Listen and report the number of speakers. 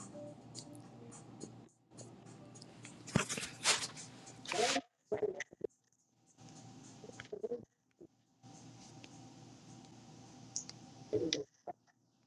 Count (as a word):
zero